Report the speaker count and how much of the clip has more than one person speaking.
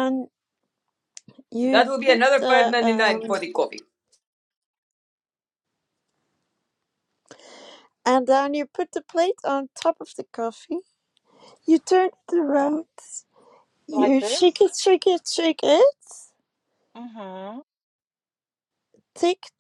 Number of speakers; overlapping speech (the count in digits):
3, about 11%